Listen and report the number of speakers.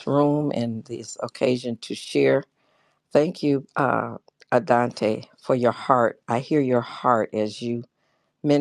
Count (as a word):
one